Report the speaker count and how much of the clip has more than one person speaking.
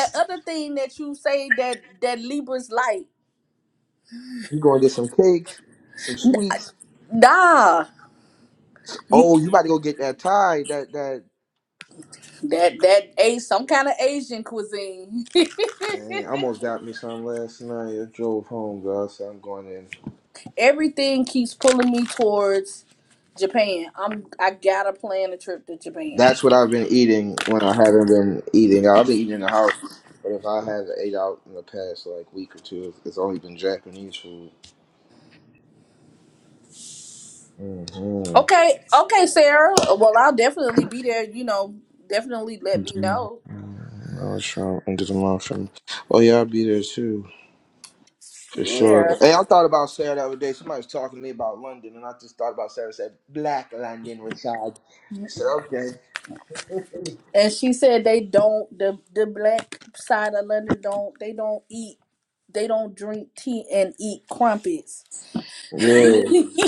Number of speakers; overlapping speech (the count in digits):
2, about 2%